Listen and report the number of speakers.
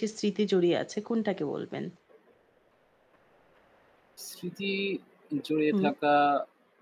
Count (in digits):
2